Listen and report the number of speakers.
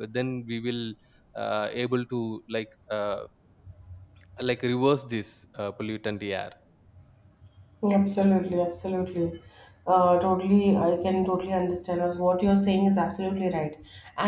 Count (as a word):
two